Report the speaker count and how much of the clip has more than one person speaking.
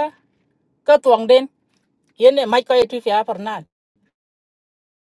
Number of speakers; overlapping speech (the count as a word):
one, no overlap